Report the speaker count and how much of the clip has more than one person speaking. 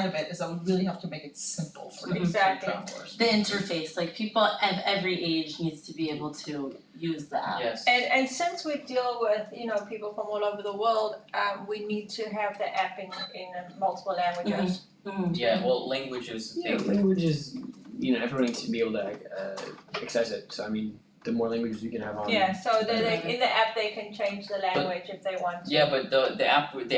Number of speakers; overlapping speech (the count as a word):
five, about 12%